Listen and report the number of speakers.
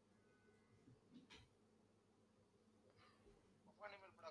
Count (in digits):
0